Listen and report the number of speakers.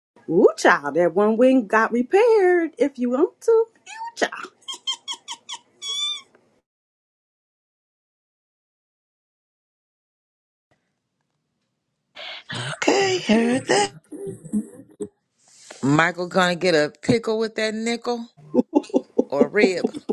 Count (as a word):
three